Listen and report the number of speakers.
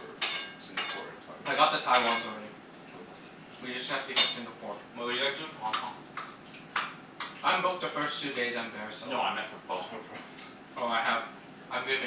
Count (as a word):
three